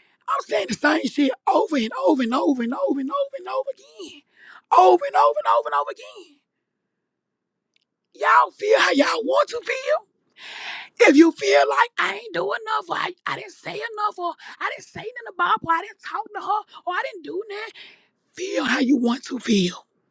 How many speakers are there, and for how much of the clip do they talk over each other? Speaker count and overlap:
1, no overlap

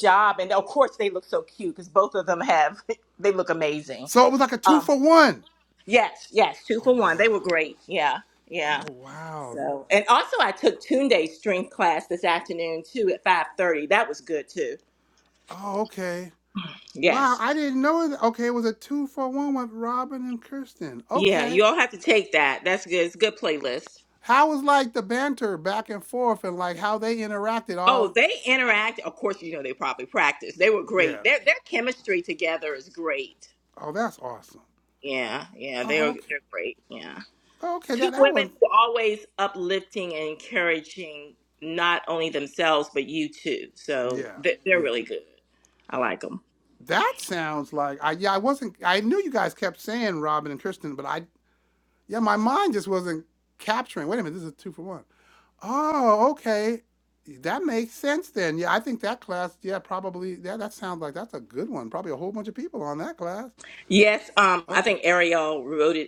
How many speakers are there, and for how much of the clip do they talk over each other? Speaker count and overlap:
2, about 7%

